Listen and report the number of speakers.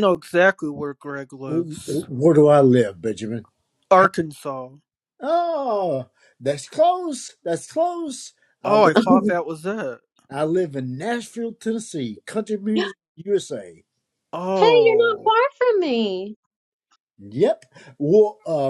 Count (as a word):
three